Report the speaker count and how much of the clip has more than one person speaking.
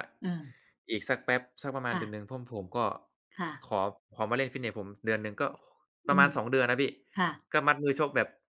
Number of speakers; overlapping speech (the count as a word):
two, about 6%